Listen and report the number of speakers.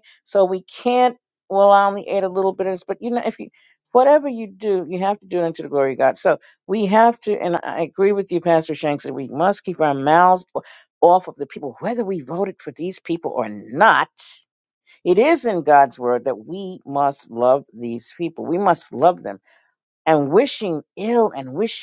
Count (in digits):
1